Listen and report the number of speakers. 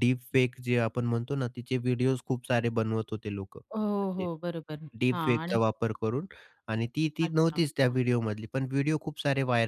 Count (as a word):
two